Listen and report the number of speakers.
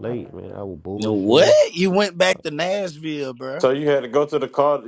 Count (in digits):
3